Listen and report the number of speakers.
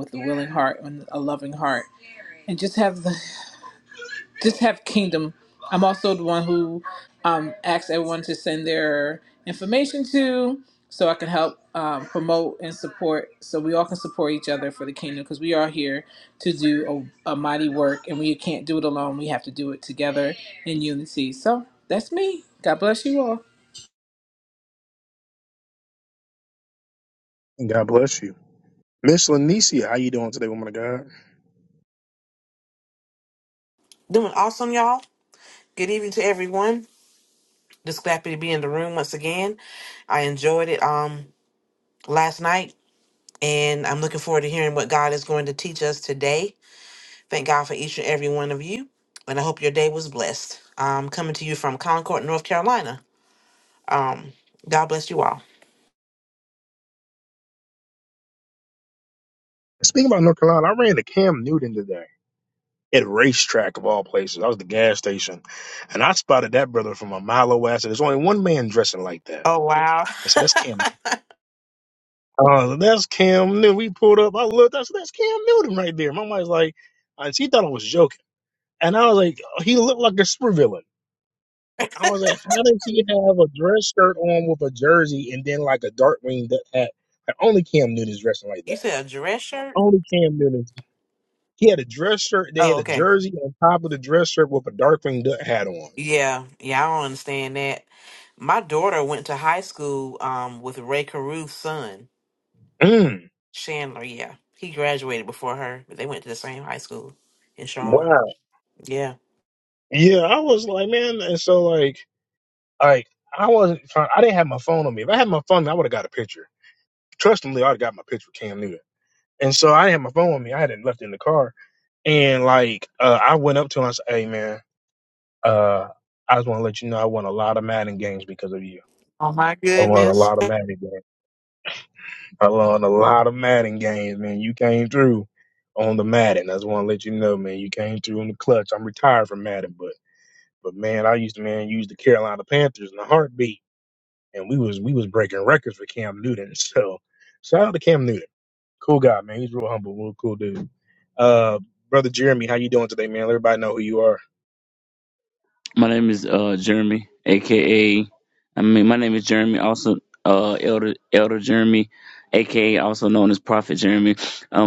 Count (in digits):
4